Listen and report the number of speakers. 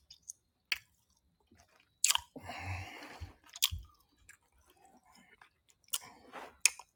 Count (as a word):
zero